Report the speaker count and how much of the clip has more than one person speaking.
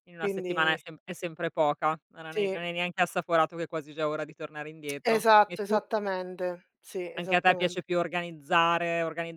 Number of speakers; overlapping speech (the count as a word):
two, about 23%